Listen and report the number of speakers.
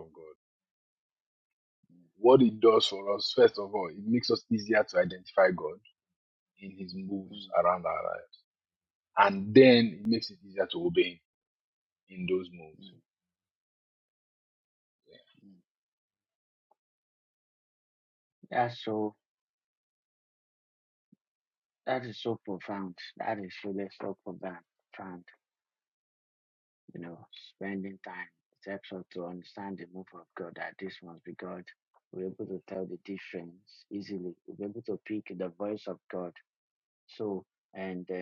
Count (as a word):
two